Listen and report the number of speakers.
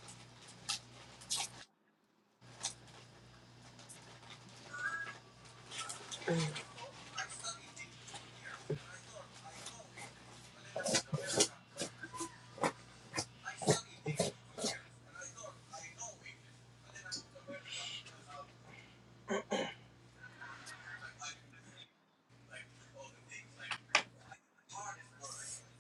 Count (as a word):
zero